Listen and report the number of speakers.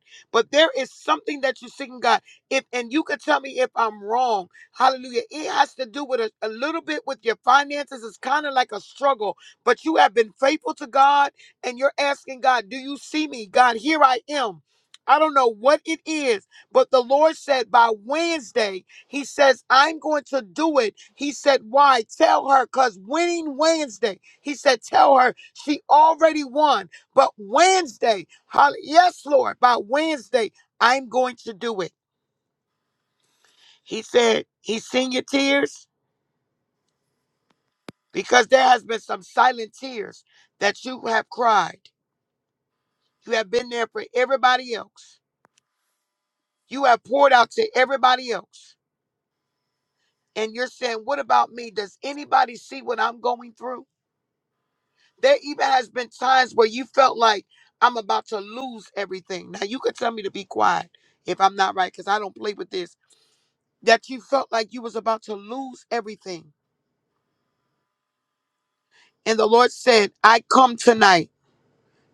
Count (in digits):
1